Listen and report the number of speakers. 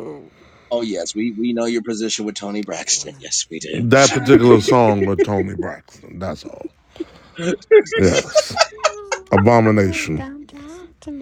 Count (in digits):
3